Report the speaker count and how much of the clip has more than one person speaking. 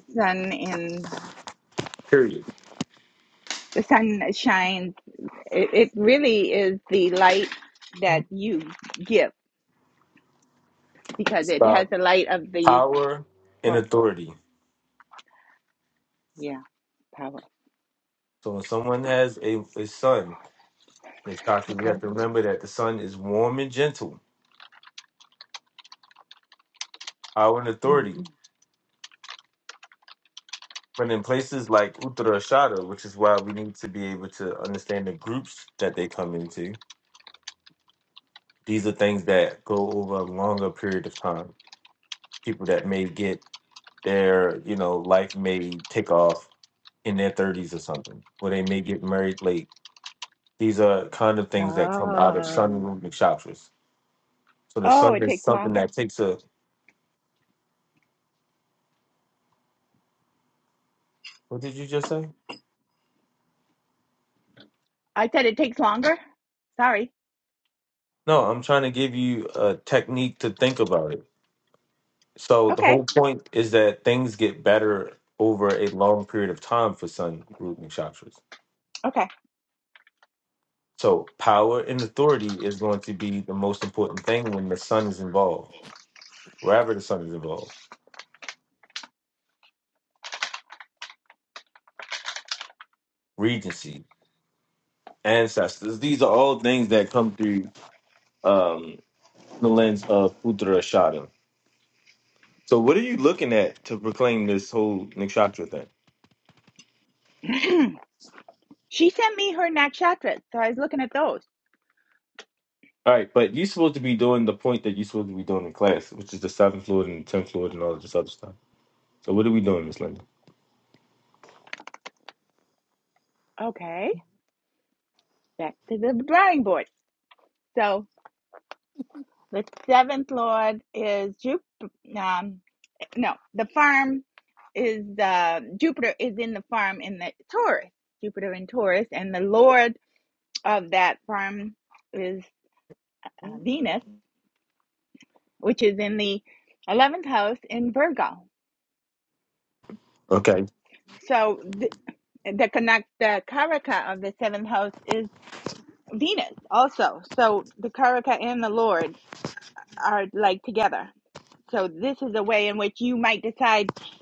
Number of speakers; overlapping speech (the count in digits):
2, about 2%